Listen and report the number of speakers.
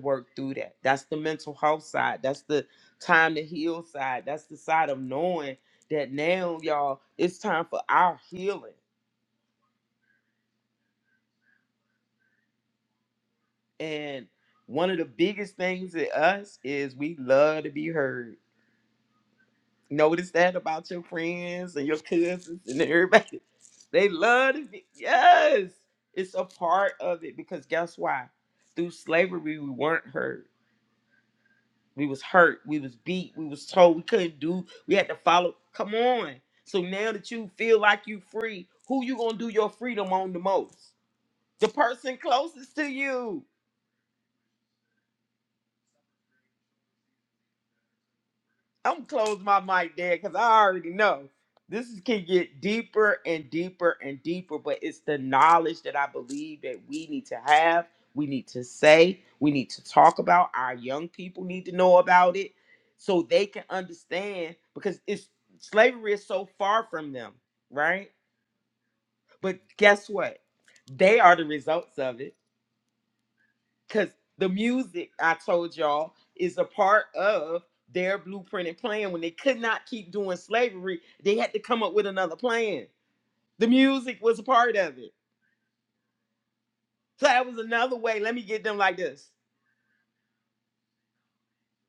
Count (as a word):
one